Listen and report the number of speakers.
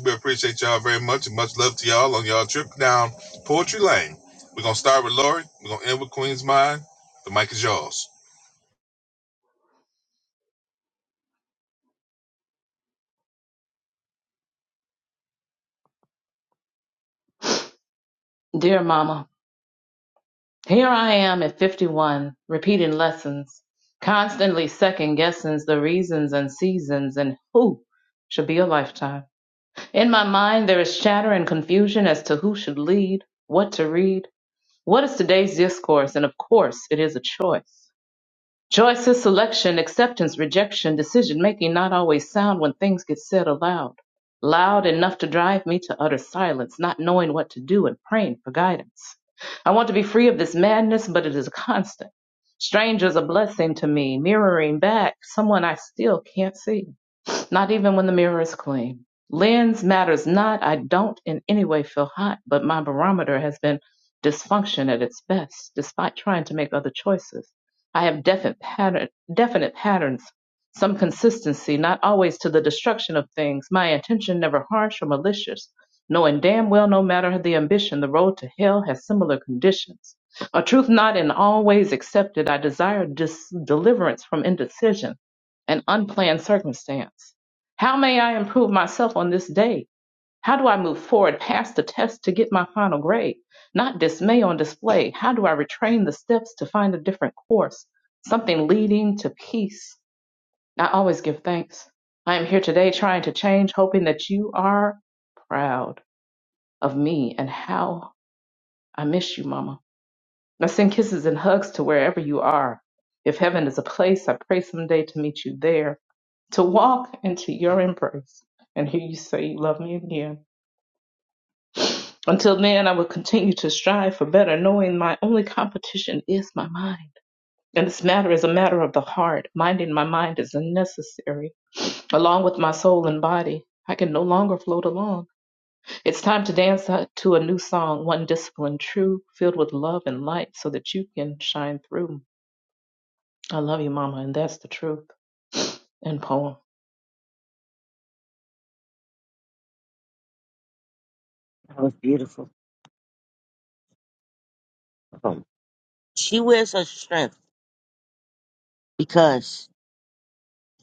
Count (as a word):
three